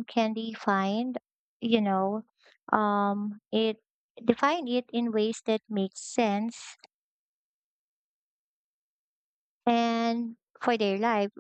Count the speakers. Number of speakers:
1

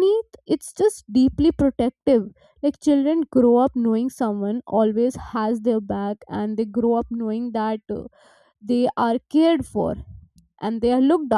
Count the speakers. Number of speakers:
1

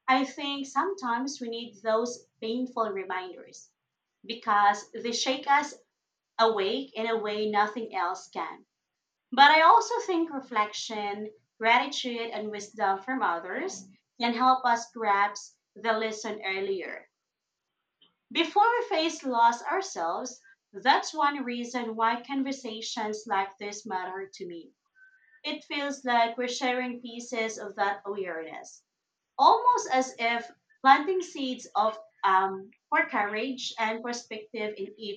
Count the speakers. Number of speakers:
1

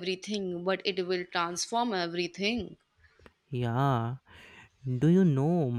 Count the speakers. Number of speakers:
2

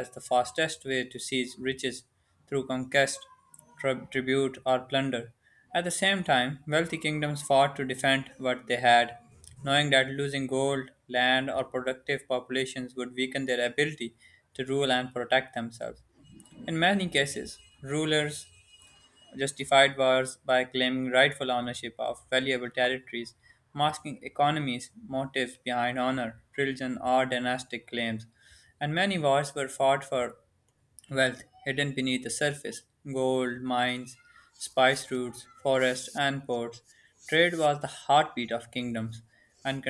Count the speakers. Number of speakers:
1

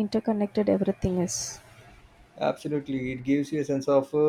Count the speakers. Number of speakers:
2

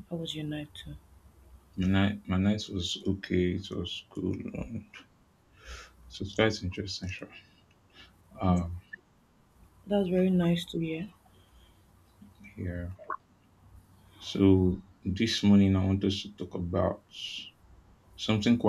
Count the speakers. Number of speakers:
2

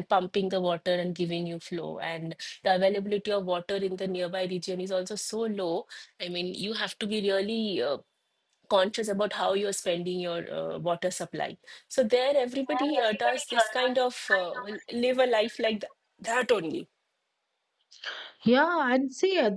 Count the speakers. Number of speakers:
2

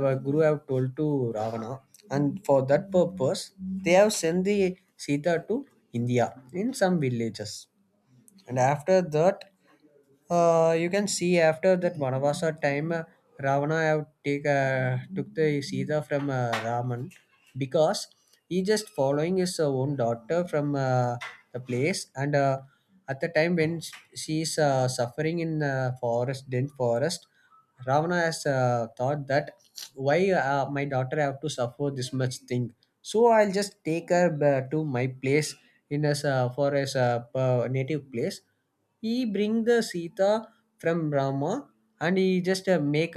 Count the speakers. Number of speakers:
1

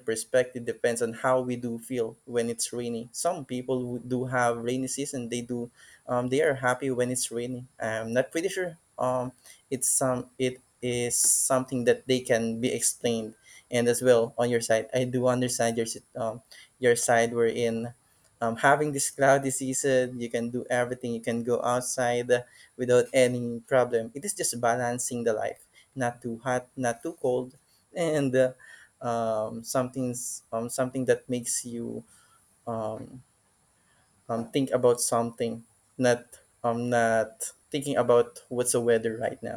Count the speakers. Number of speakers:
1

